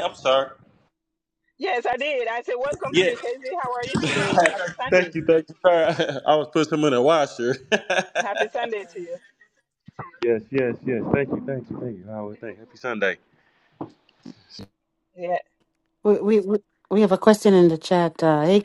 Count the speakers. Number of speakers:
three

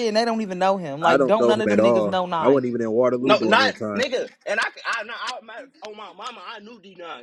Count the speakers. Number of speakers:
three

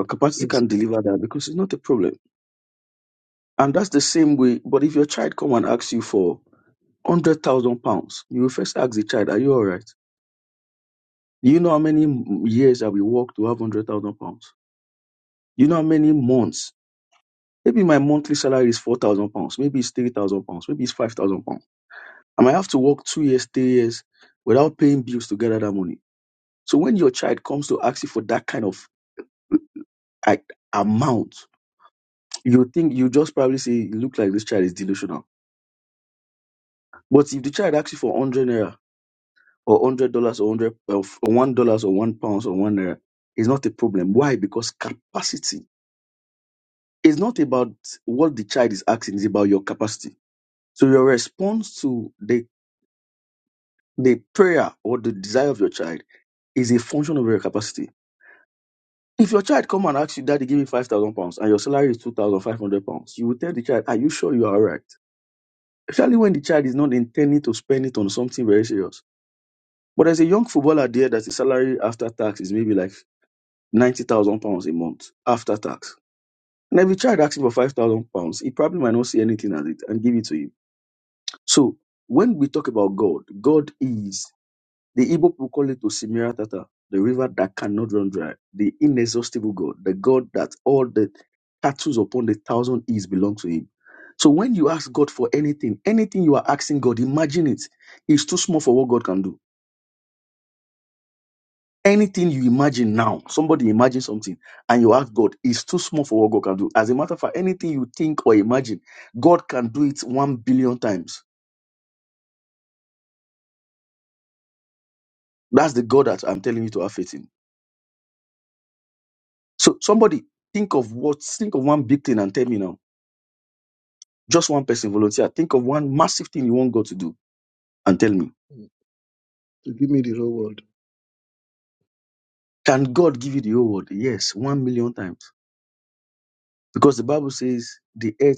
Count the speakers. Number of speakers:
two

